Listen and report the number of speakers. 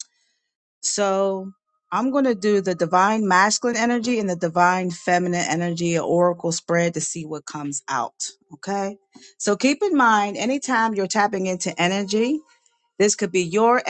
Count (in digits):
1